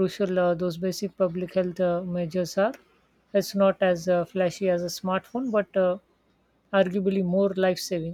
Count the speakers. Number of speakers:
one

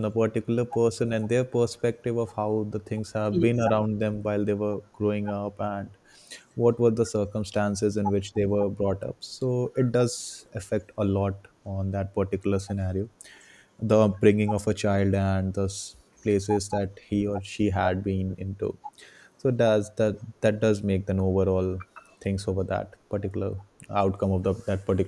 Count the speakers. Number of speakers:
one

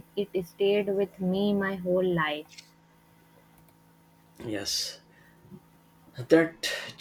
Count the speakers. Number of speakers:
two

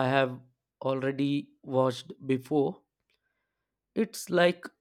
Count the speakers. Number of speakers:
one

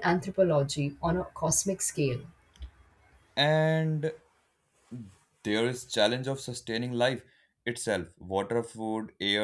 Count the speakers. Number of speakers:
two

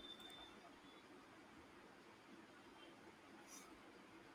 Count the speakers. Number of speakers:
zero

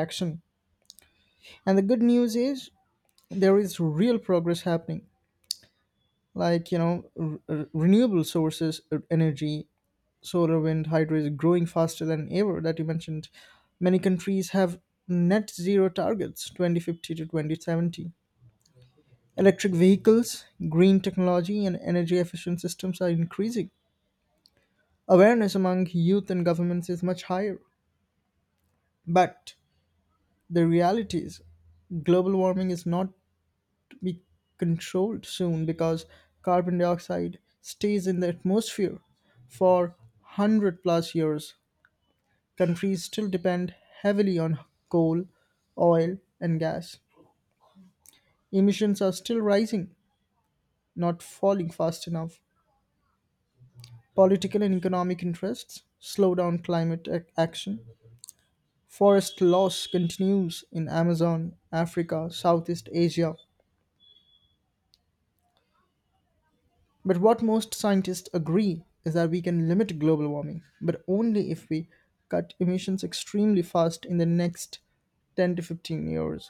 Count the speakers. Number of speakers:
one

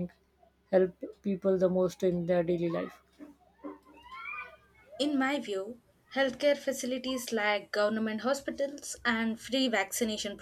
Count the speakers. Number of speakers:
two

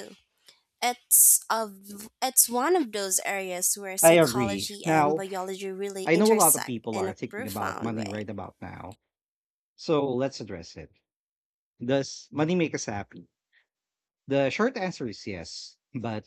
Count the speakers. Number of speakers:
two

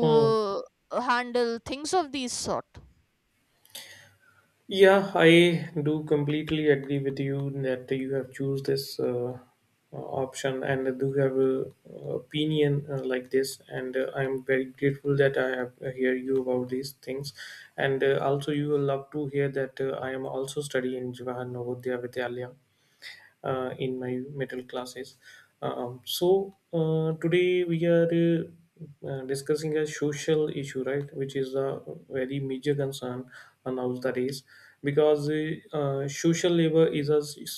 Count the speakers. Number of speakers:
two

